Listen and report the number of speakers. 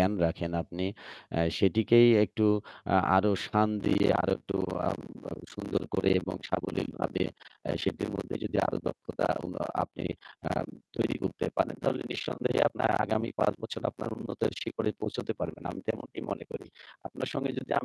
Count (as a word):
one